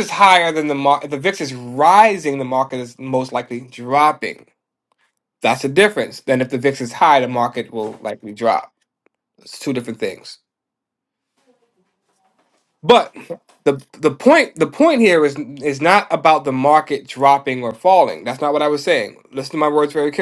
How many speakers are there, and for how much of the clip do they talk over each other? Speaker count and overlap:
one, no overlap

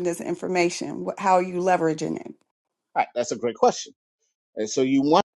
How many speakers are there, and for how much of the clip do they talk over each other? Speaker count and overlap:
two, no overlap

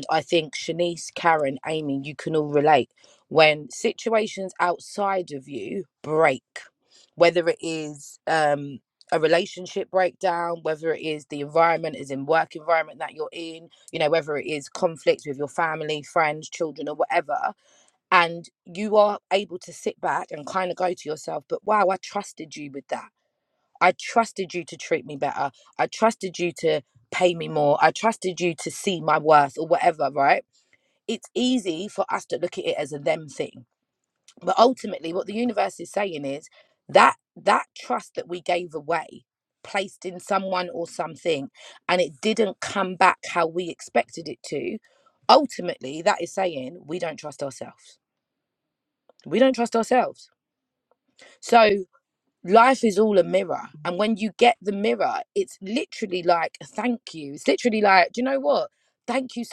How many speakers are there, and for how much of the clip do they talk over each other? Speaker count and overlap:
one, no overlap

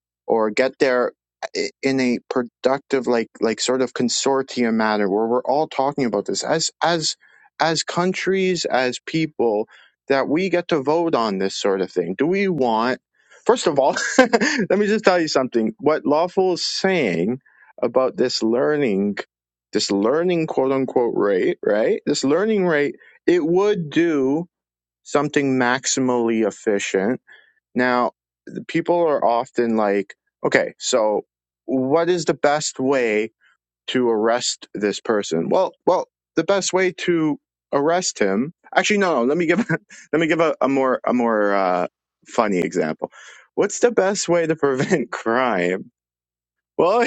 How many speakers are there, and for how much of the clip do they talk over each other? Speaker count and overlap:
one, no overlap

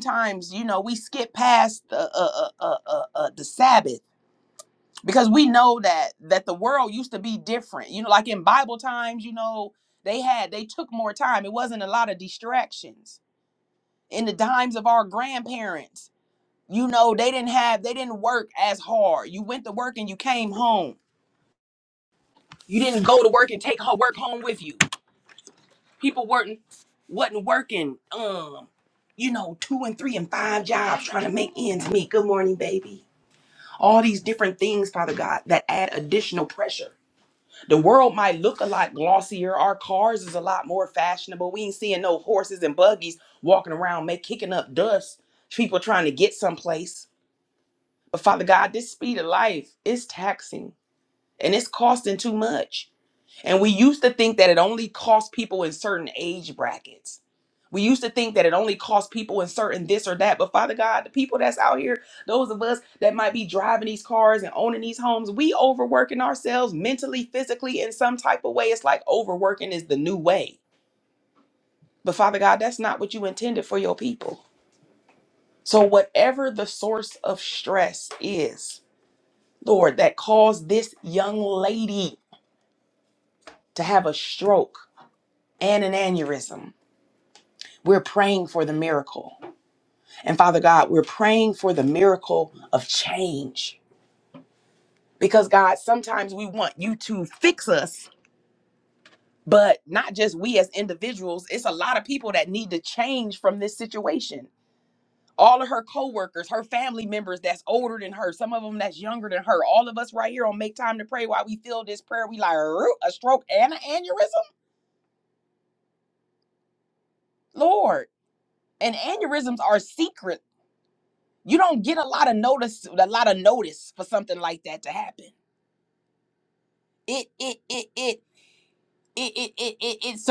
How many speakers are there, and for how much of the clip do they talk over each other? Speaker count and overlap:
one, no overlap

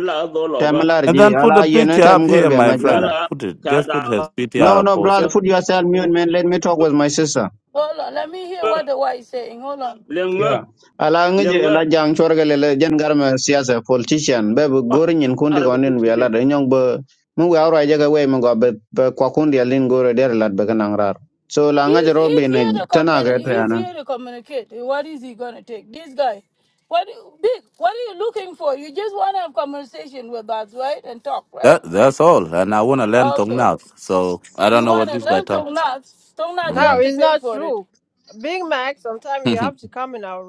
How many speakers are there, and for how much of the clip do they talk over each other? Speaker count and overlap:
five, about 25%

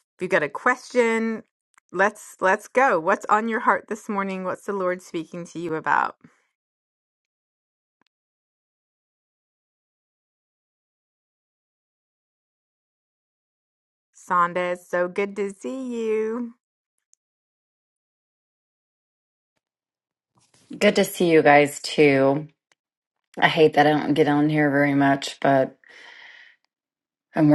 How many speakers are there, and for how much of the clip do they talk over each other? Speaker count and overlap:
two, no overlap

